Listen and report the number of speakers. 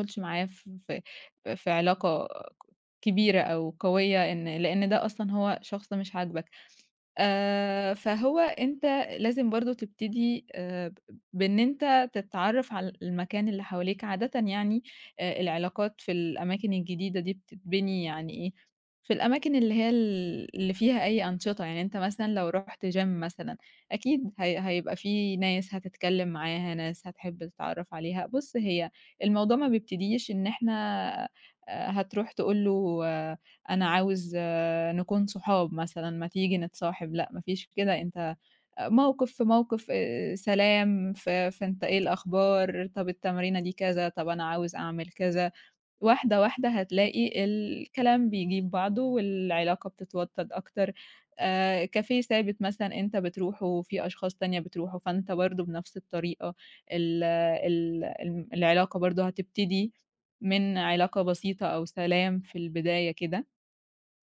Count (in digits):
1